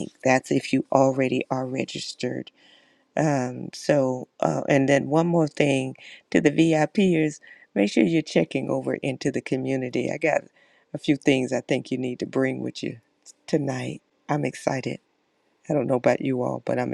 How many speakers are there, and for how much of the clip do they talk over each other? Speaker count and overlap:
1, no overlap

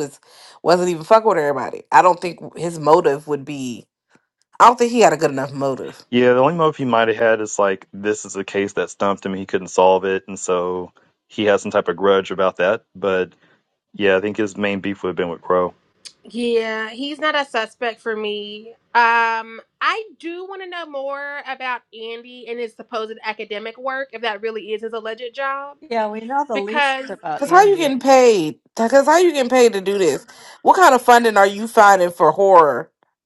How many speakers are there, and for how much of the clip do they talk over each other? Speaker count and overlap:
4, about 3%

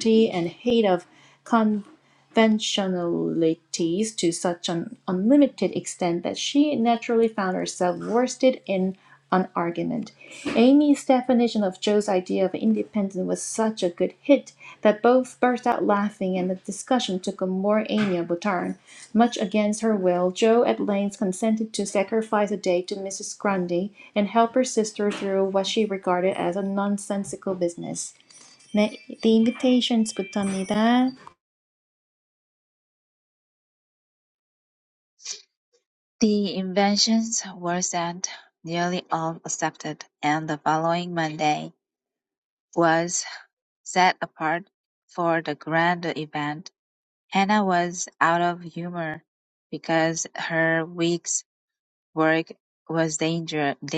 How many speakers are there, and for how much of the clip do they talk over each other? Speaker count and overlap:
2, no overlap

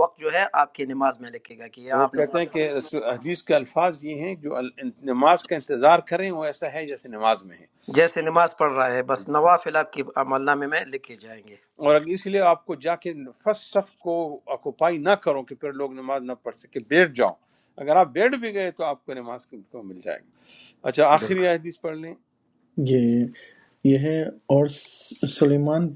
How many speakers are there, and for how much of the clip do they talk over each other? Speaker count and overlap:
3, about 4%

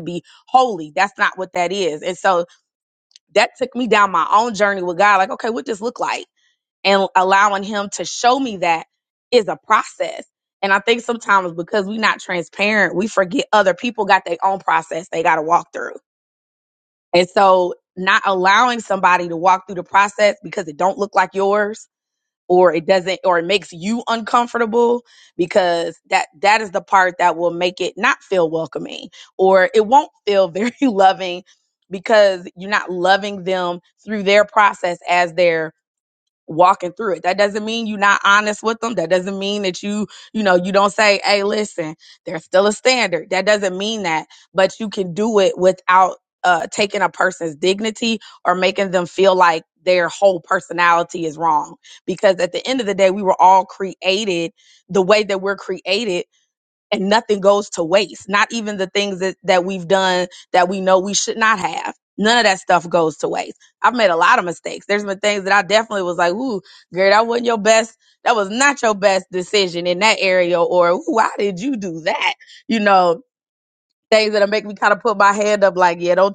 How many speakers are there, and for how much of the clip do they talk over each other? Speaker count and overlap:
1, no overlap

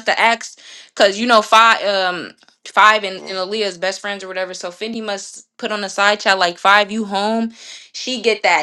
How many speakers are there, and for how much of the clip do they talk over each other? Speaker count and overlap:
1, no overlap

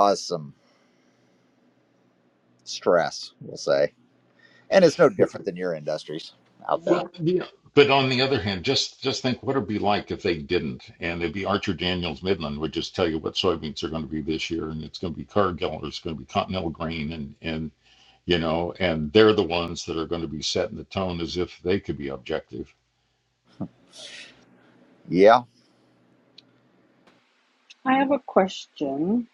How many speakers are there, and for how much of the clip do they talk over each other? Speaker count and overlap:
3, about 1%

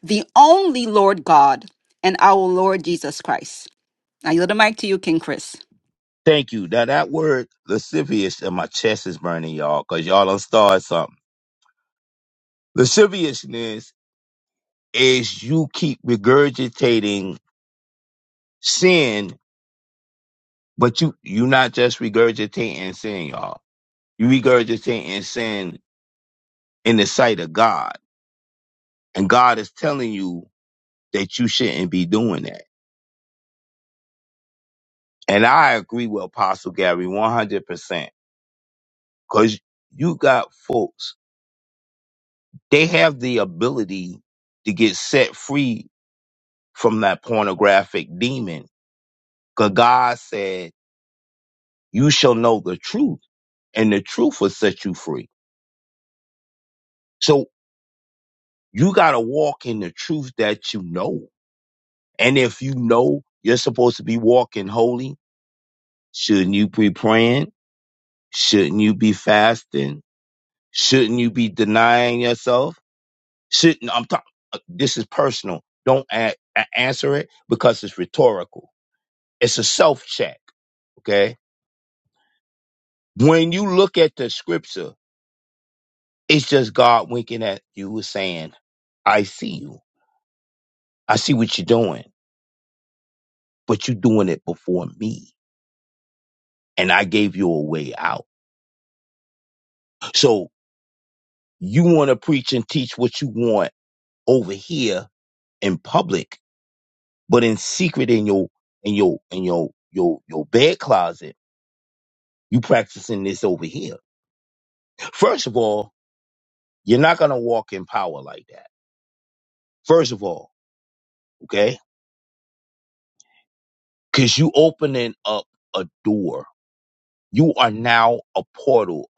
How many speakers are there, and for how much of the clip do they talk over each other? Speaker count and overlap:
2, no overlap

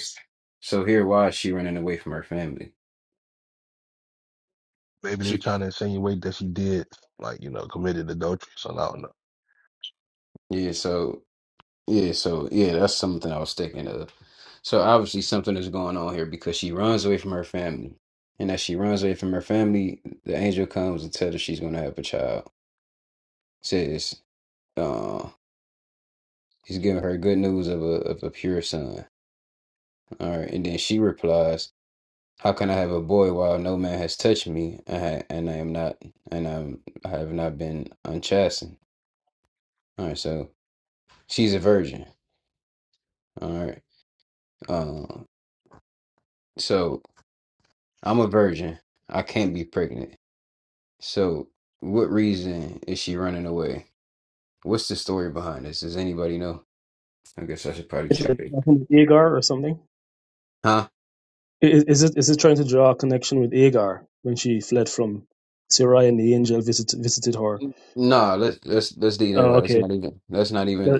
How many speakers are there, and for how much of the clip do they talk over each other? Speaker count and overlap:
3, about 2%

